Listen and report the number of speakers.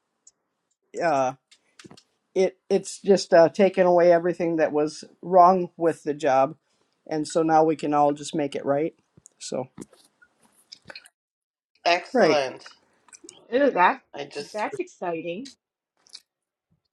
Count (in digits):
3